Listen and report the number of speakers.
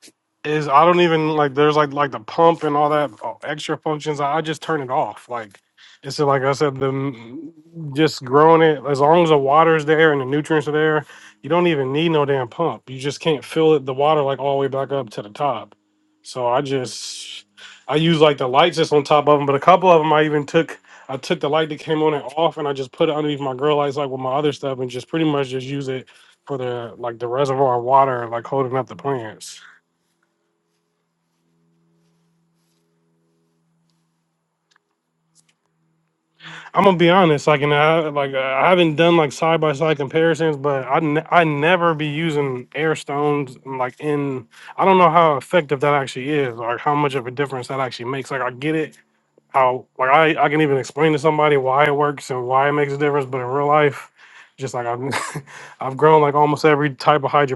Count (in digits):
1